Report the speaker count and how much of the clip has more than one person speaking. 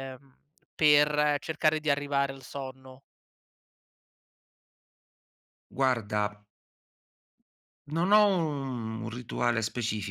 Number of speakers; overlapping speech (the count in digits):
2, no overlap